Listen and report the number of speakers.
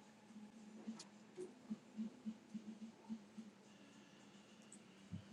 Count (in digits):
0